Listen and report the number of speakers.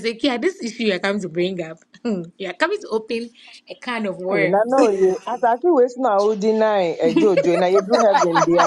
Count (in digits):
2